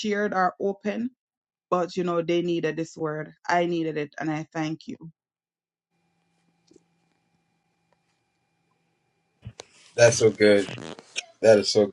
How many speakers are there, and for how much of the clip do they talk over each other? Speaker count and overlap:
2, no overlap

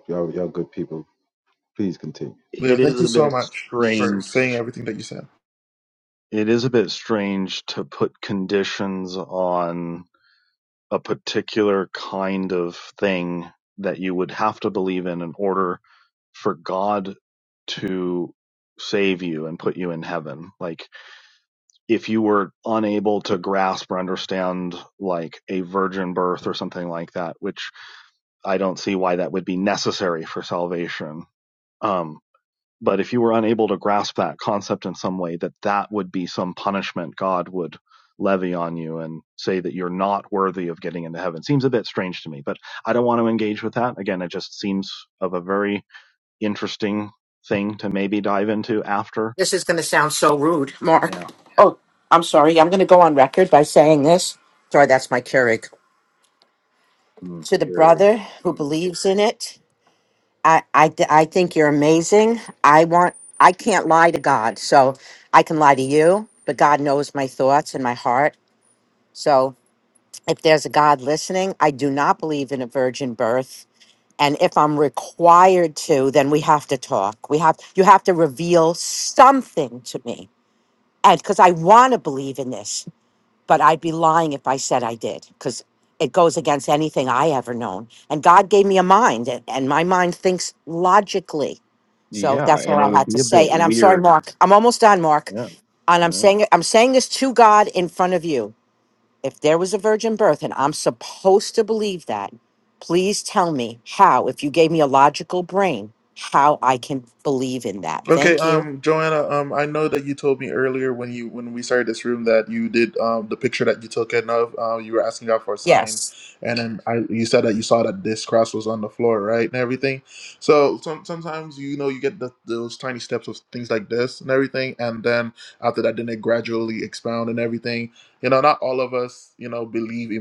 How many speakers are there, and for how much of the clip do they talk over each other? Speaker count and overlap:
4, about 4%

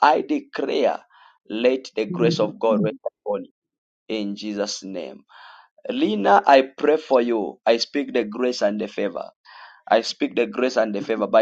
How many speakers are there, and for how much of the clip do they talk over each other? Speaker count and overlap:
1, no overlap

